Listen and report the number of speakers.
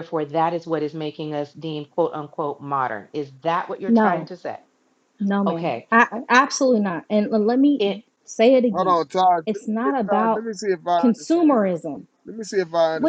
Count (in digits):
3